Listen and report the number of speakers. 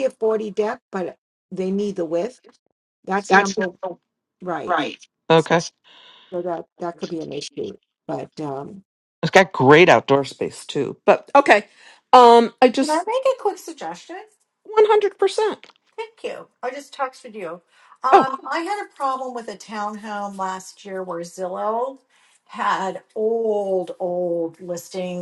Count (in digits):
3